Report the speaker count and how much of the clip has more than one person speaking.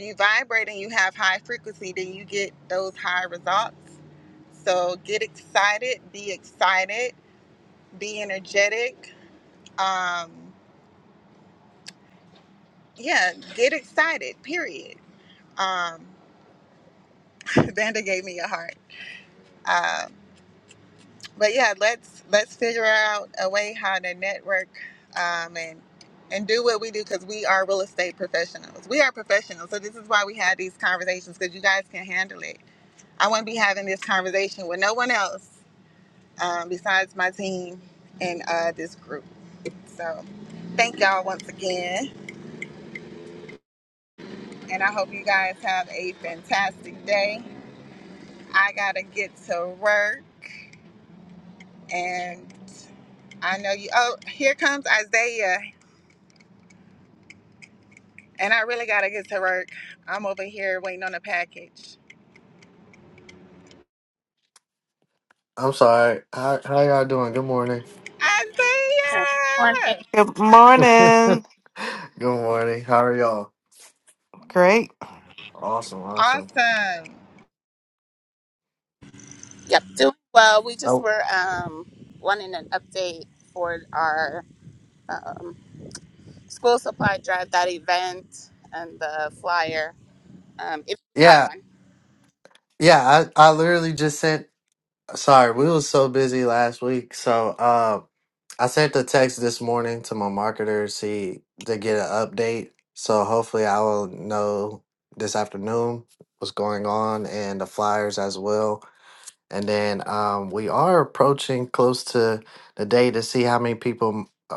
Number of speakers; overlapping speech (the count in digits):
4, about 1%